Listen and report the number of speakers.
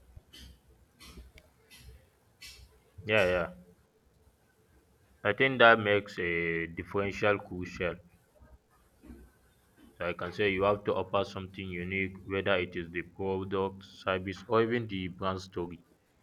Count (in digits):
1